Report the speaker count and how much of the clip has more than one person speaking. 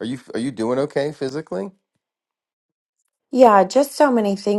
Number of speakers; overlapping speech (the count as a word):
two, no overlap